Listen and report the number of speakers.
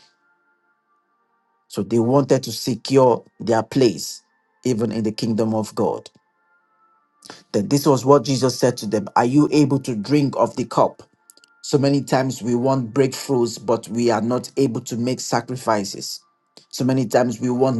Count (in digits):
1